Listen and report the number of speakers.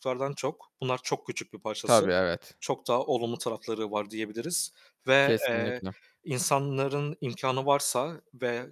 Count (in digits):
2